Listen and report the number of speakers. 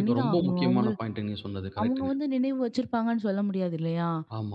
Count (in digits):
2